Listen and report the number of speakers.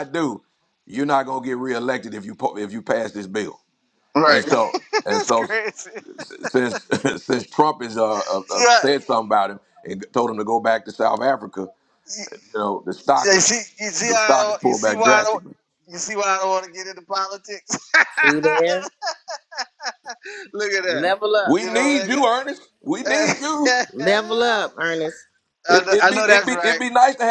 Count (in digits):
3